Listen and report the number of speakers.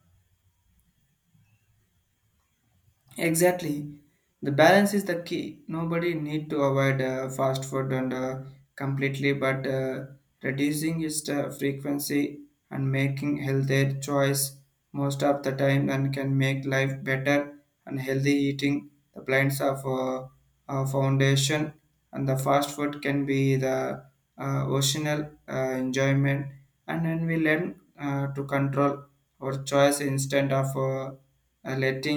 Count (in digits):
1